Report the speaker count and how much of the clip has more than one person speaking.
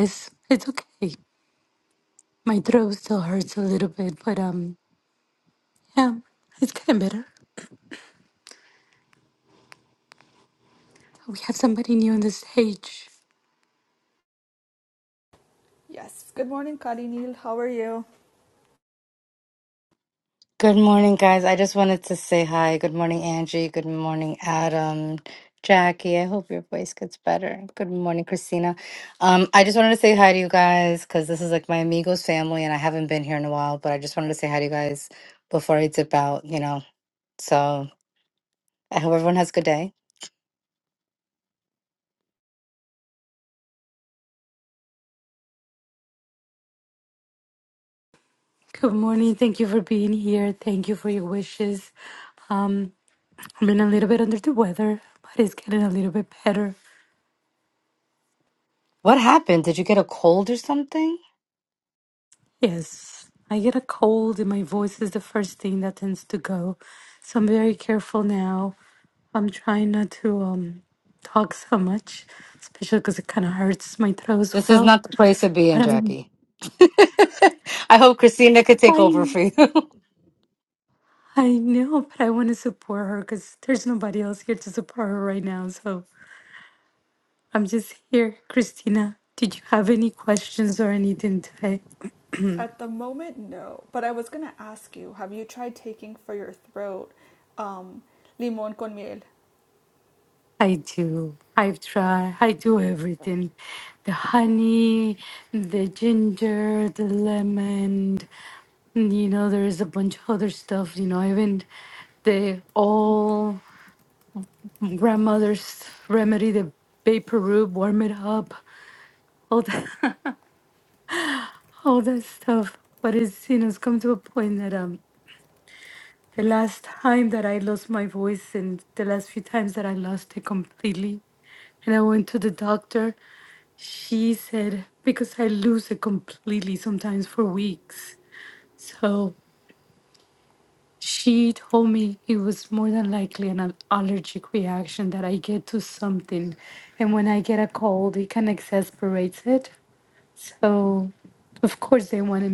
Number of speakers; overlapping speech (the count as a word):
three, about 1%